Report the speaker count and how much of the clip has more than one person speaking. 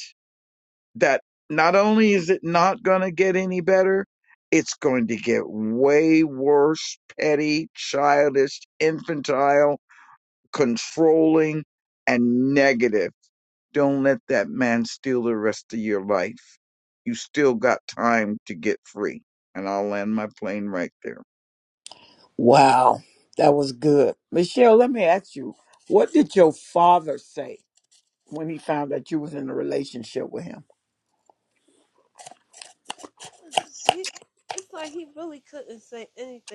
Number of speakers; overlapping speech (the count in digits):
3, no overlap